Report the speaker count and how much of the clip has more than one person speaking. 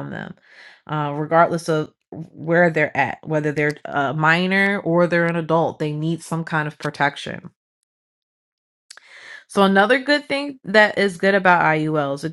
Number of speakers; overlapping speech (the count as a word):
one, no overlap